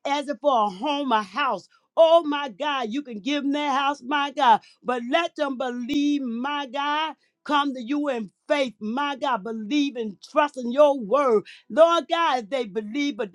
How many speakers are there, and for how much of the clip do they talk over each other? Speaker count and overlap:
1, no overlap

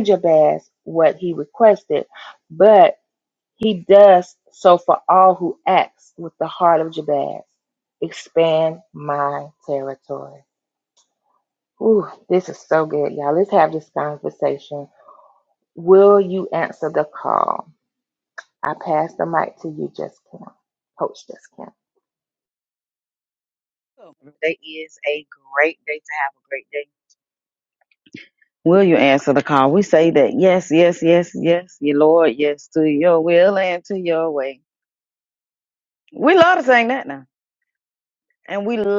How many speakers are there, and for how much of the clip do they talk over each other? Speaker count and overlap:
2, no overlap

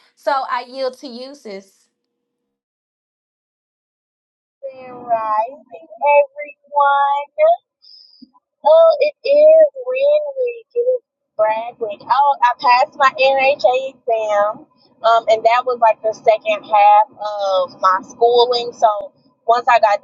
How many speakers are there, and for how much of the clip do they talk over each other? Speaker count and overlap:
2, no overlap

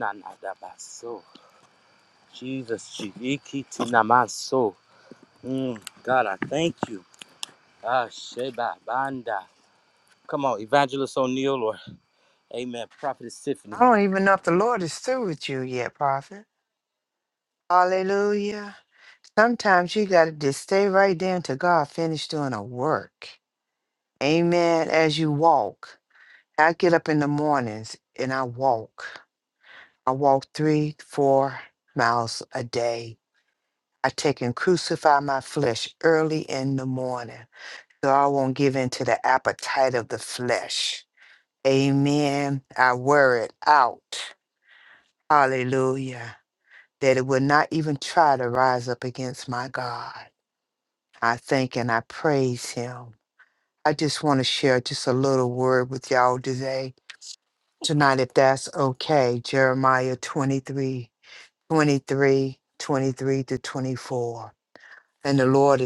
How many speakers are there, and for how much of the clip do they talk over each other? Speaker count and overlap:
2, under 1%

